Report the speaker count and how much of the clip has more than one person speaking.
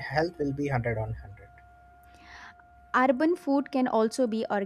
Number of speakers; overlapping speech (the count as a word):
two, no overlap